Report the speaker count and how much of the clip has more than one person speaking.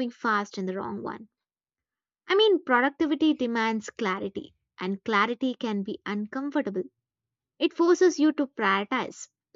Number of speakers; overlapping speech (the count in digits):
1, no overlap